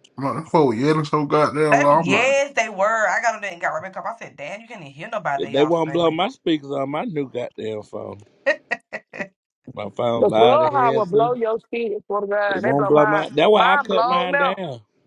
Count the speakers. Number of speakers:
4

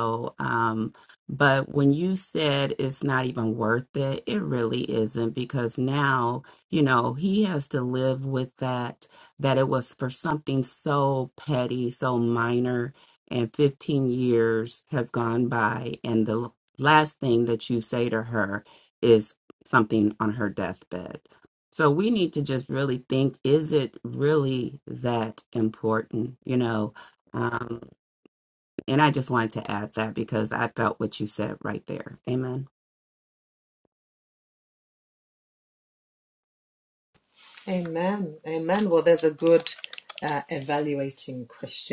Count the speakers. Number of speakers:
2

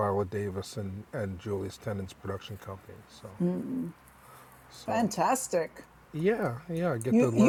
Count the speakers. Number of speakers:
2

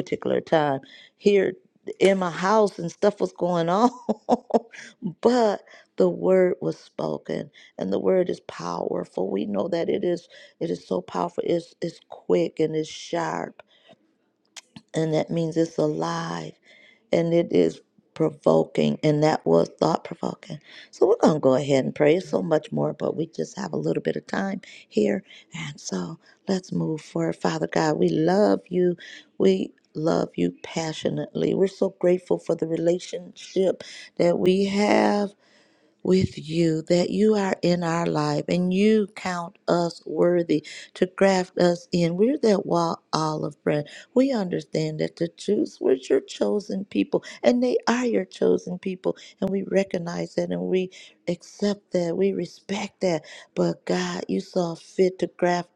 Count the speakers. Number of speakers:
1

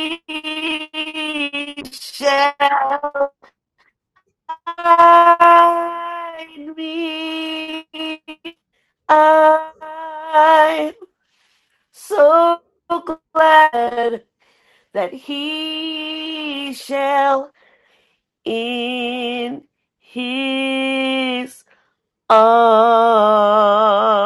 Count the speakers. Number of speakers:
1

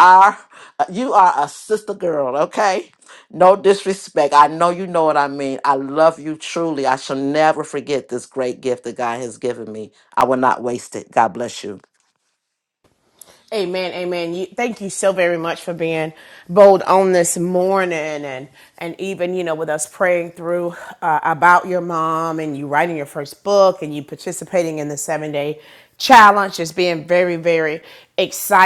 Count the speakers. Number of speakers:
2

